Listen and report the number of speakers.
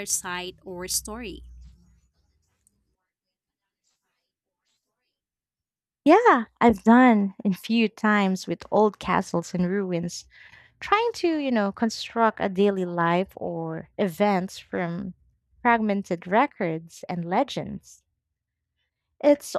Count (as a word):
two